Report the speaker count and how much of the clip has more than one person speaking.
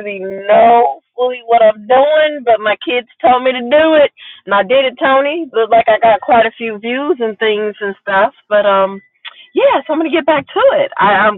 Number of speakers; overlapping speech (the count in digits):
1, no overlap